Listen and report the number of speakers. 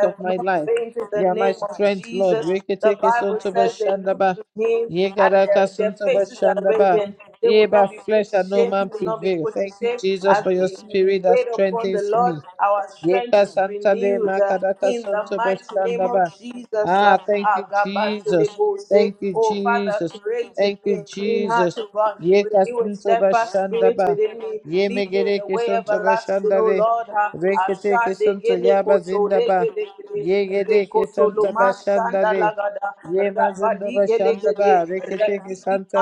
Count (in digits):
2